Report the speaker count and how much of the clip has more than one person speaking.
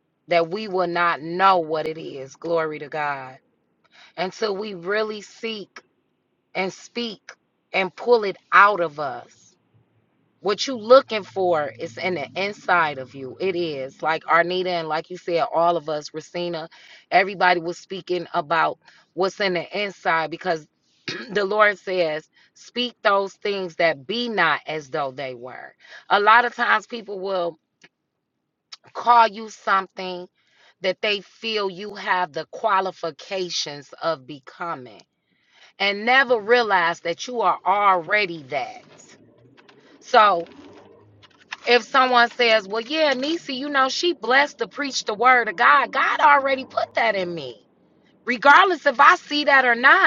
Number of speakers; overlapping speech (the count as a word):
one, no overlap